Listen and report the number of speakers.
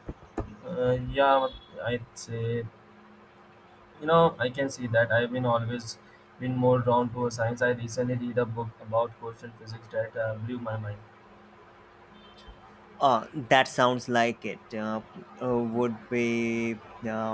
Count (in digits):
2